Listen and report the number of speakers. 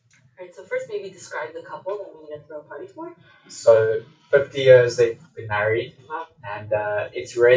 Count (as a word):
two